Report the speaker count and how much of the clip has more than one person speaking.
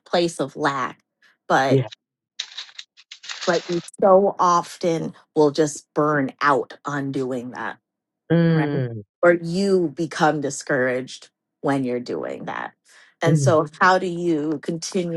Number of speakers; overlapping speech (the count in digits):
2, about 4%